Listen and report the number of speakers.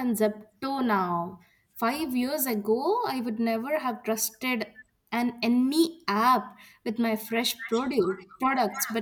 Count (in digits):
1